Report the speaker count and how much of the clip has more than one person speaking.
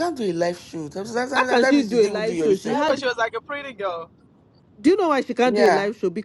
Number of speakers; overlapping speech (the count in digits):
3, about 34%